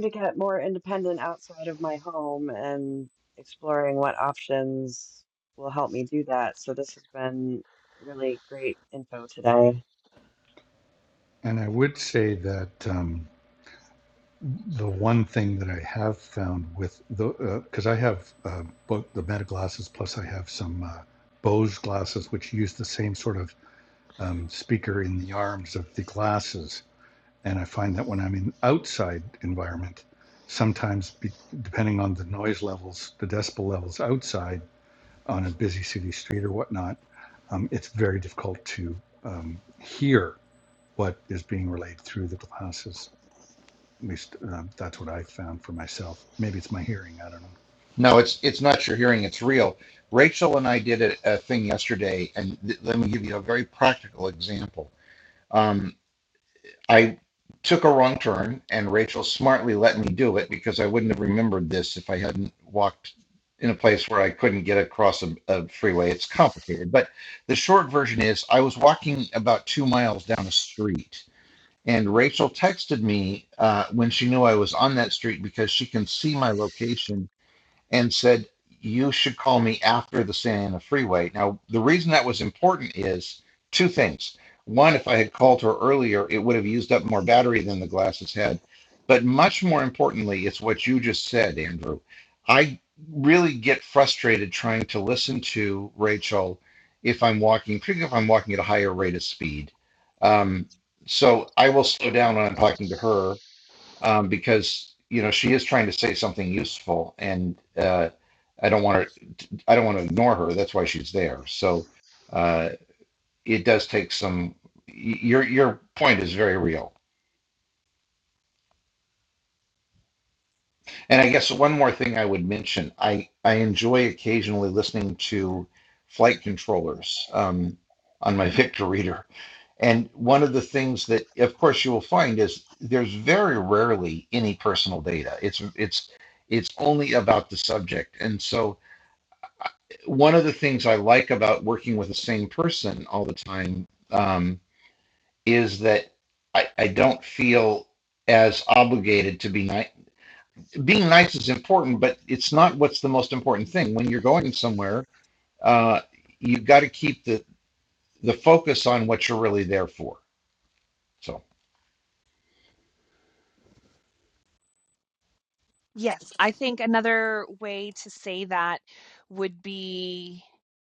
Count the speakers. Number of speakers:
four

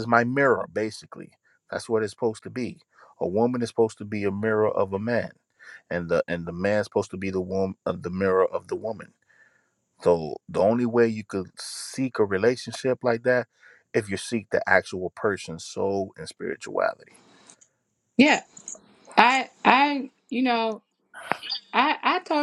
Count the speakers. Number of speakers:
two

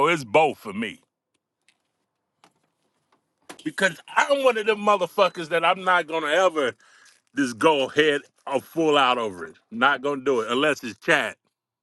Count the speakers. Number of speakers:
one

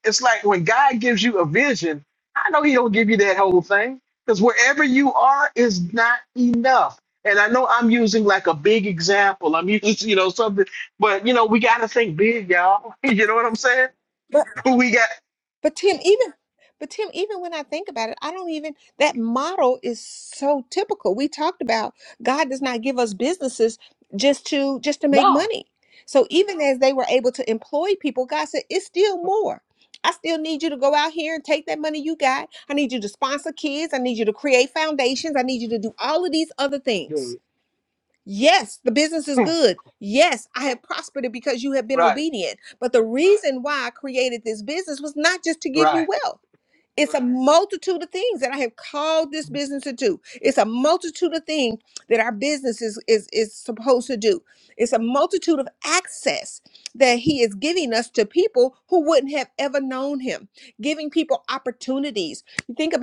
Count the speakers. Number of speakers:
two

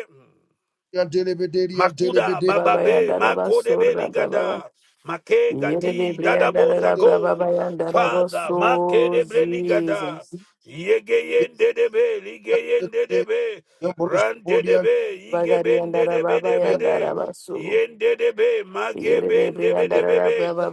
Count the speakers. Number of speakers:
three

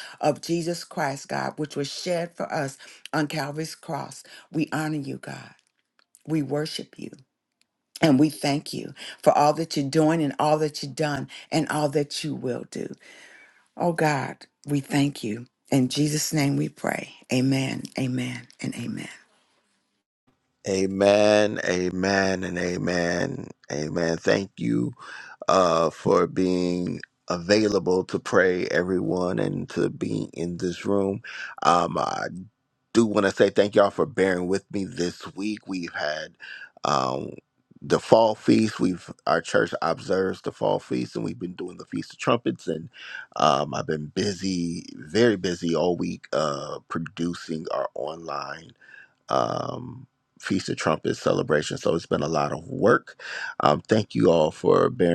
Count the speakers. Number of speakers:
two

